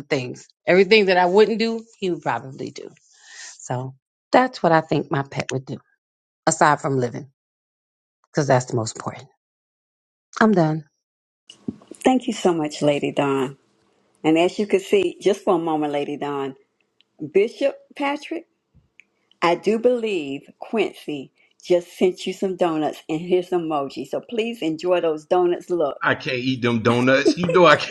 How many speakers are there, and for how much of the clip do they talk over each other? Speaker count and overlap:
3, under 1%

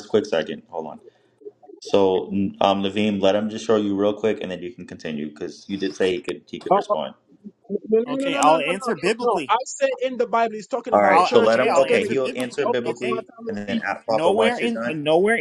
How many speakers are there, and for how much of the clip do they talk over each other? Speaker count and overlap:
3, about 35%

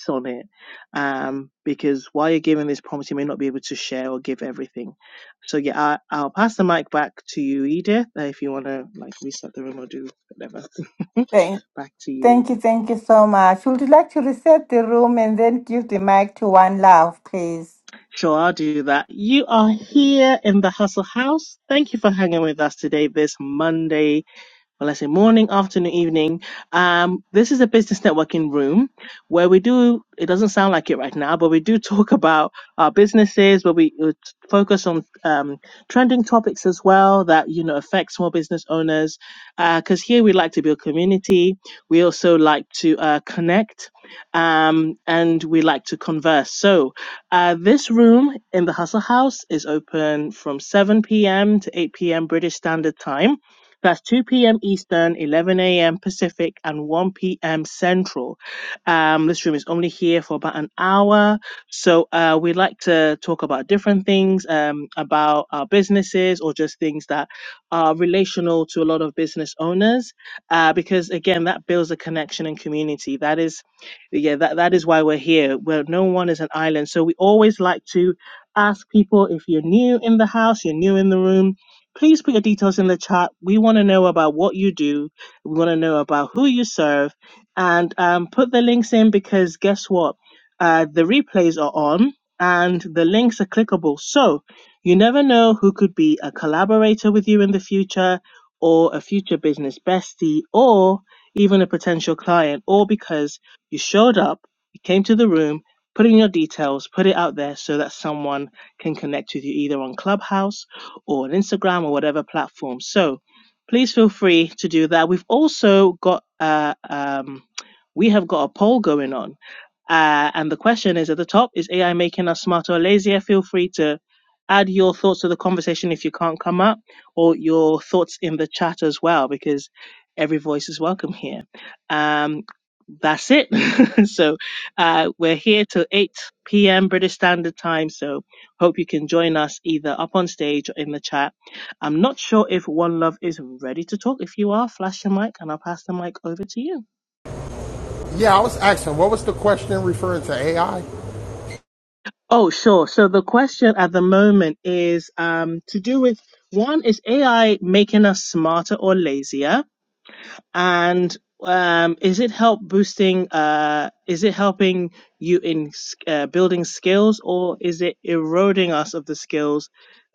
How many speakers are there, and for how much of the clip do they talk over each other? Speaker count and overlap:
3, under 1%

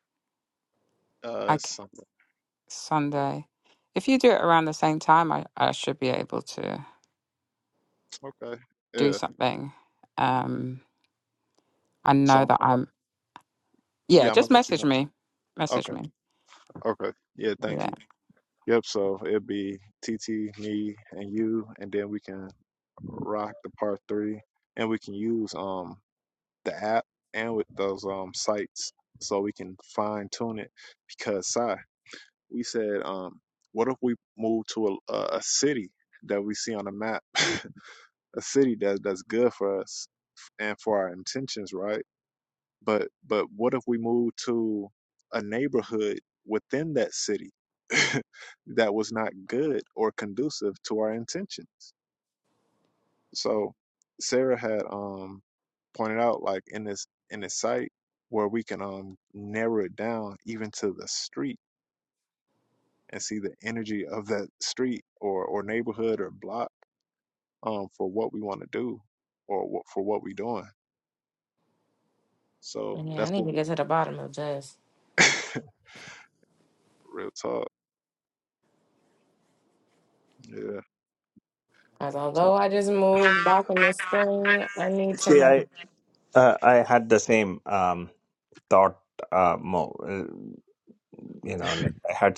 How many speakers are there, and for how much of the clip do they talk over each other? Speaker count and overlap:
4, about 4%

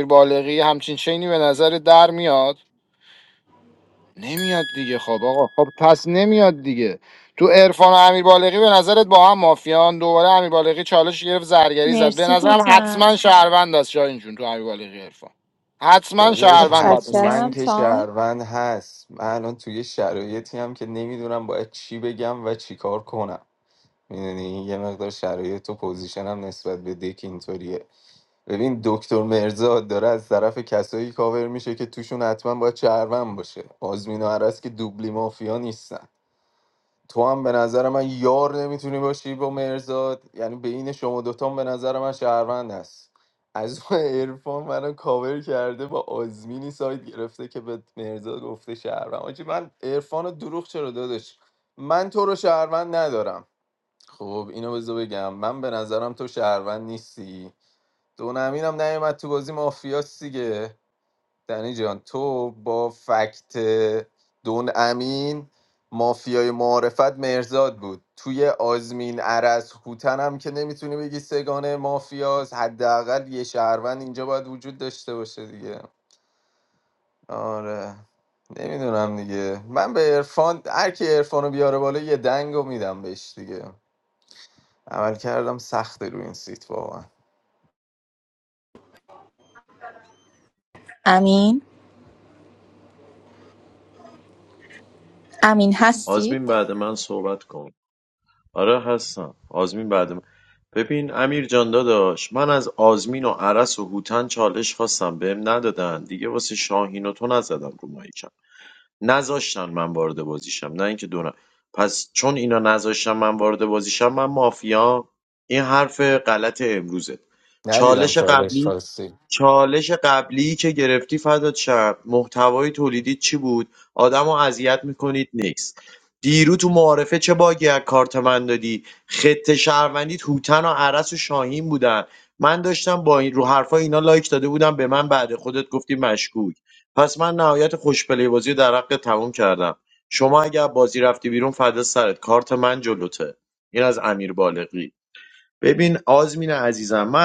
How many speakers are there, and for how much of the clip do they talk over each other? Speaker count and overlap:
4, about 2%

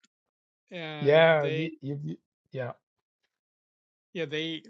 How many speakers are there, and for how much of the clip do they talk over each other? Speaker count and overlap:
2, about 15%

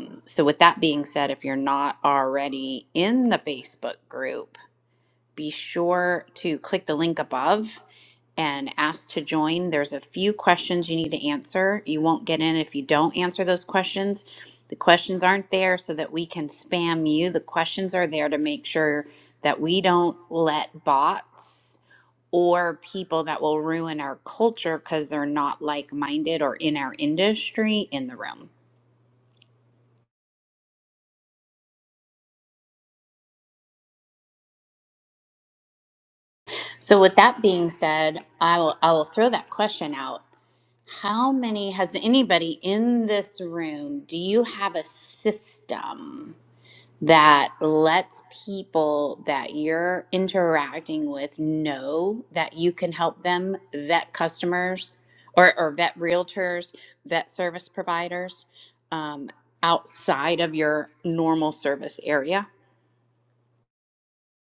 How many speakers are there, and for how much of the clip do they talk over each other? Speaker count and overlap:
1, no overlap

